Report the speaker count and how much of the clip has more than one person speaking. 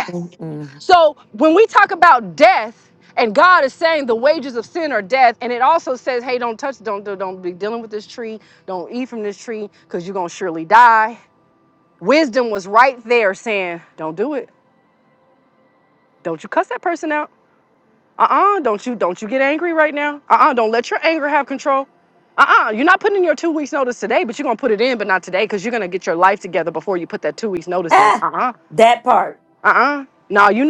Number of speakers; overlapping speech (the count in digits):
2, about 1%